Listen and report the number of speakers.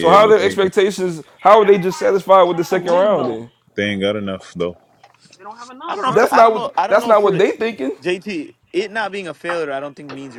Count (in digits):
4